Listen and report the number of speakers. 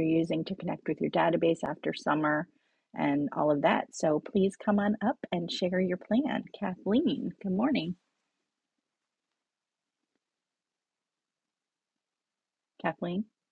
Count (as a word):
one